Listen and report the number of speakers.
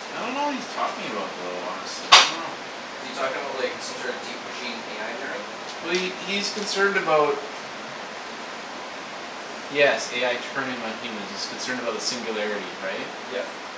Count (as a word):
two